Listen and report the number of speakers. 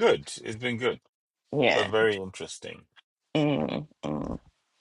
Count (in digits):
2